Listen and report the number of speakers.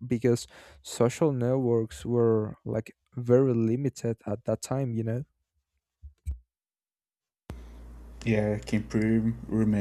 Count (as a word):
two